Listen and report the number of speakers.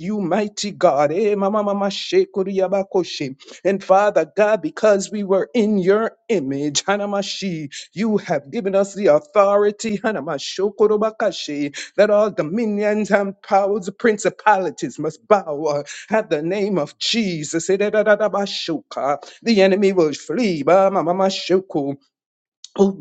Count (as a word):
one